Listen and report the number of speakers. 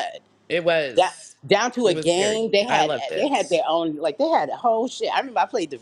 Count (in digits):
2